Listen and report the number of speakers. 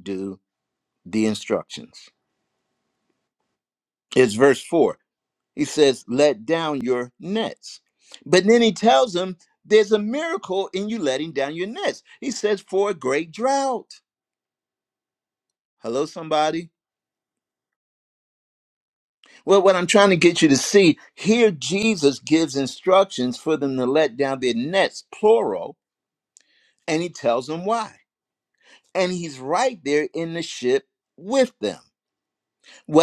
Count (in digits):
1